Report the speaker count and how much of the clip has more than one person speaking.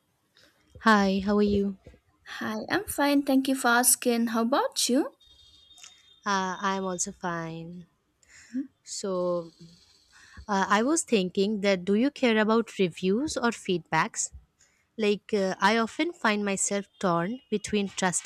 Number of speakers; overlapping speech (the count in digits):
2, no overlap